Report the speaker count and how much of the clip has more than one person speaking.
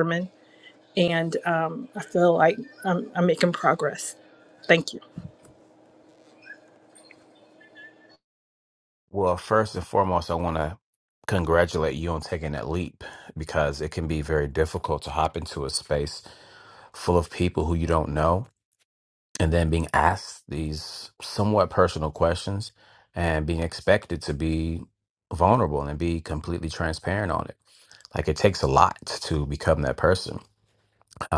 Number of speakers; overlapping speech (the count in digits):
2, no overlap